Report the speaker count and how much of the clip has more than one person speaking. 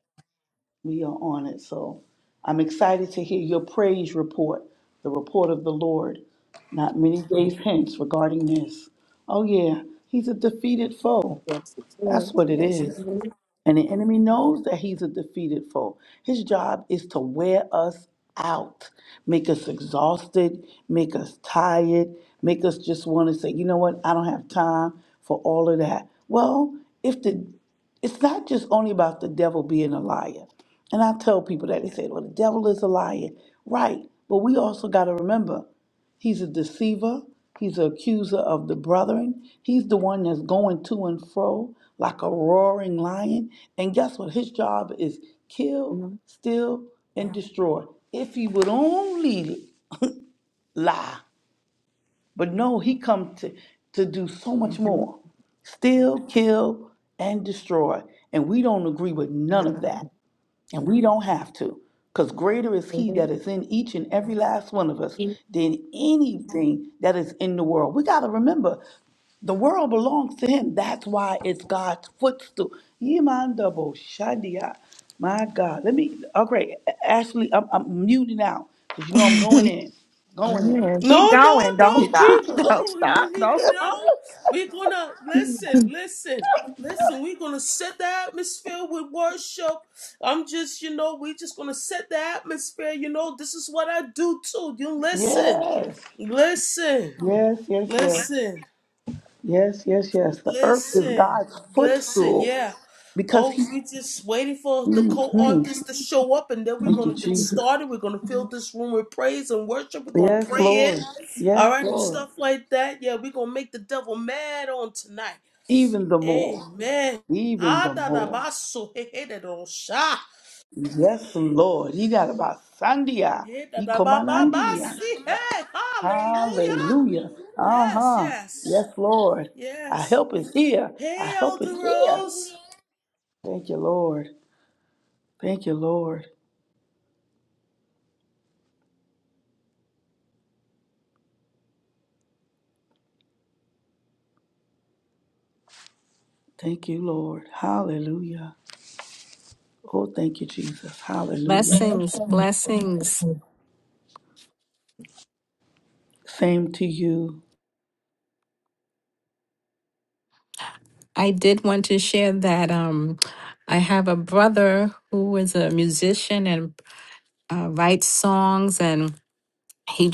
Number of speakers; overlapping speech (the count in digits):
4, about 10%